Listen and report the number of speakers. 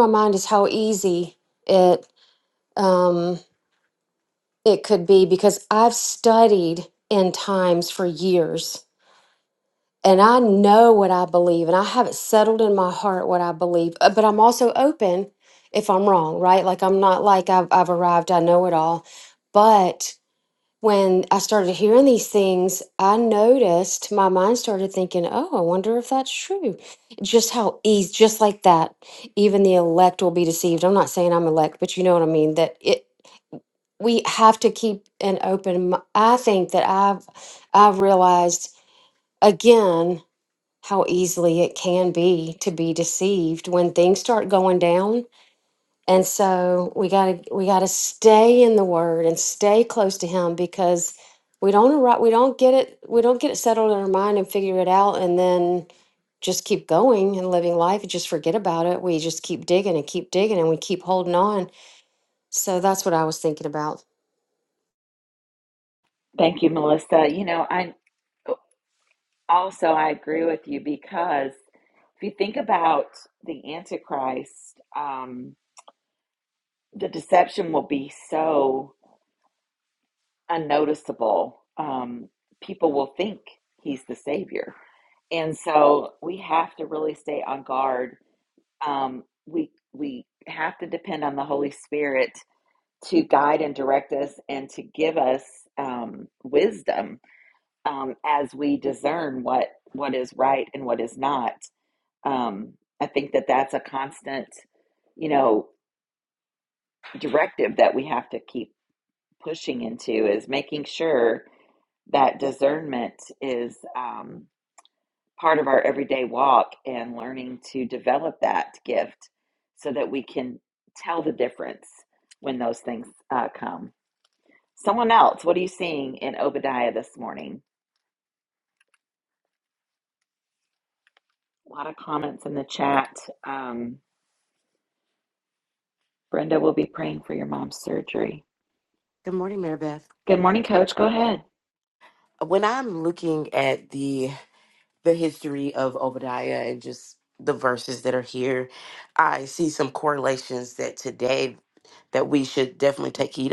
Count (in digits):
3